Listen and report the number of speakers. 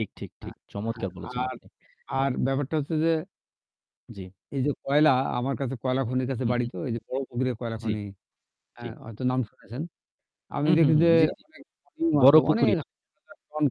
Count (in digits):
2